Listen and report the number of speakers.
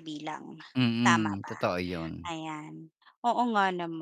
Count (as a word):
two